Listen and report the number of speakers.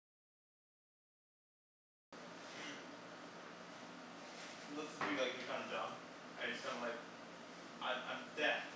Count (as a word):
one